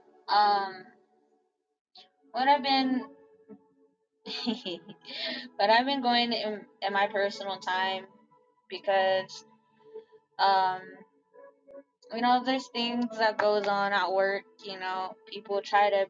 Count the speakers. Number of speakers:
1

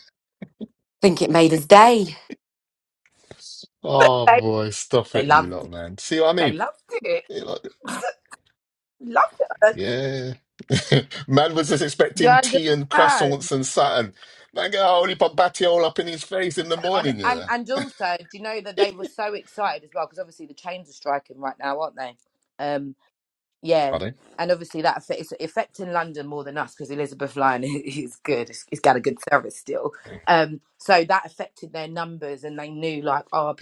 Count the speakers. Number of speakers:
3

